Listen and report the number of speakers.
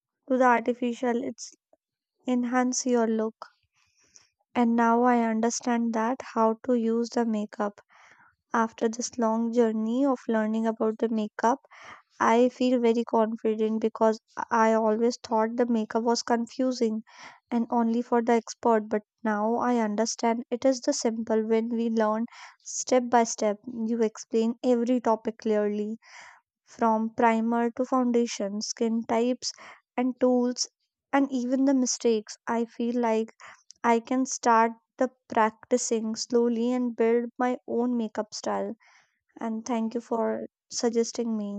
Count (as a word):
one